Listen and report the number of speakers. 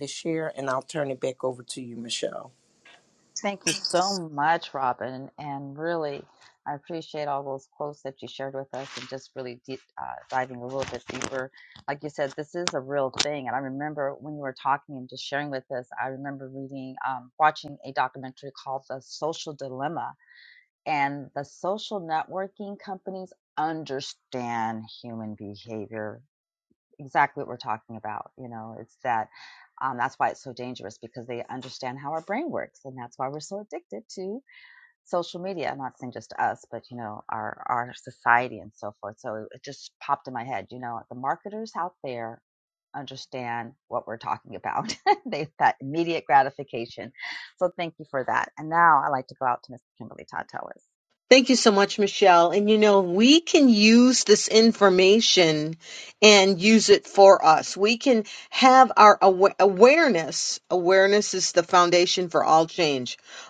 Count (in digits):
3